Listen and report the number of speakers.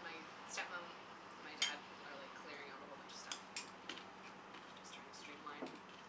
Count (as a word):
one